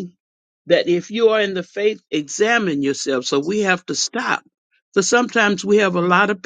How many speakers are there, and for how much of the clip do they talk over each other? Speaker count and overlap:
1, no overlap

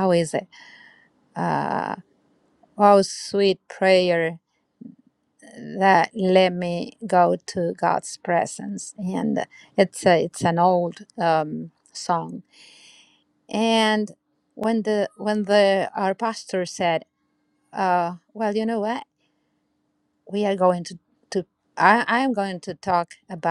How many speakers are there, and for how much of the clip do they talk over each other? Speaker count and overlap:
1, no overlap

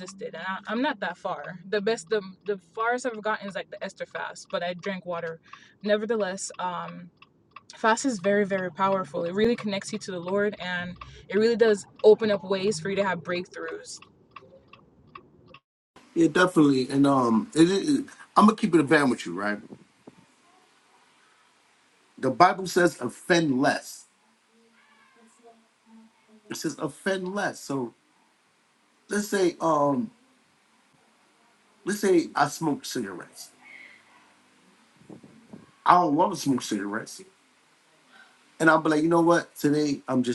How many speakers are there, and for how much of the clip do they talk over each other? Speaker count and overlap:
2, no overlap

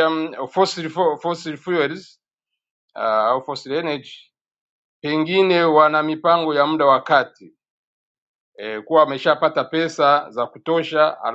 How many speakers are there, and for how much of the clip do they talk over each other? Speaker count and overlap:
1, no overlap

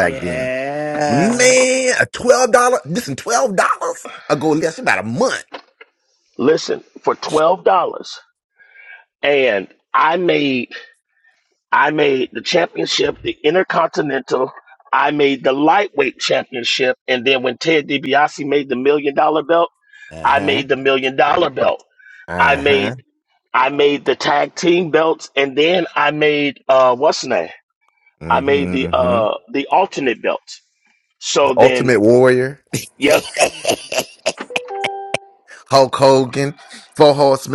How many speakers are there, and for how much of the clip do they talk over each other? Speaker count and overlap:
3, about 8%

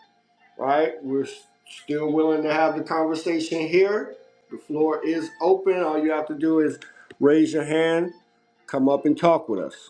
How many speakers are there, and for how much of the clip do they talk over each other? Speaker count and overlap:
1, no overlap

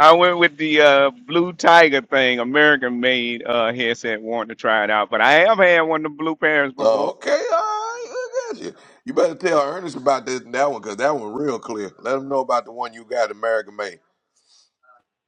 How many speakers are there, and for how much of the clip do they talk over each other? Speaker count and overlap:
2, about 2%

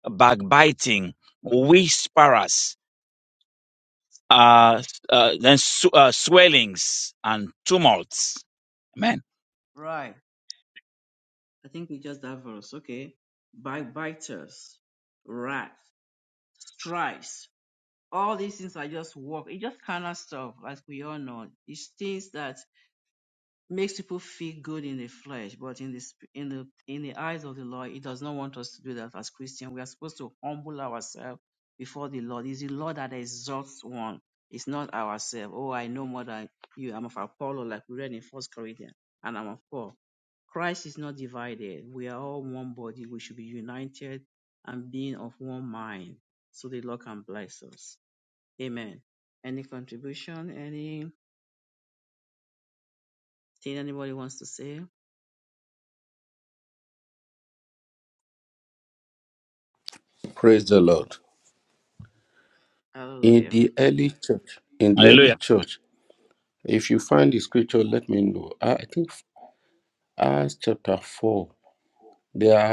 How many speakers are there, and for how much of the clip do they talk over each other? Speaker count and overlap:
3, about 1%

